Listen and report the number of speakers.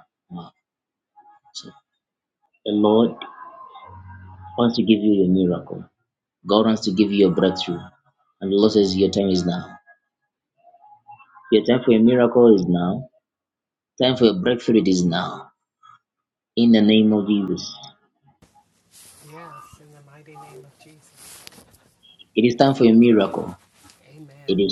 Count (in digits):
2